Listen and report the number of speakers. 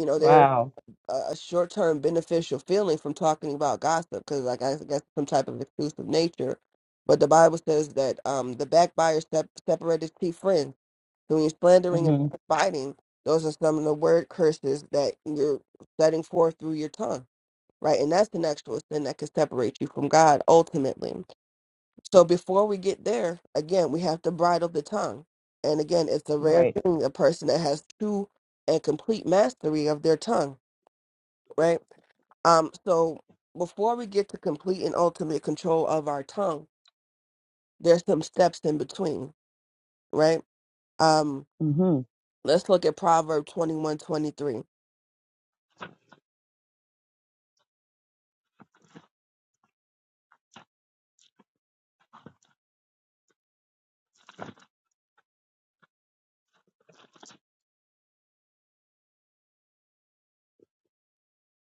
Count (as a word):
two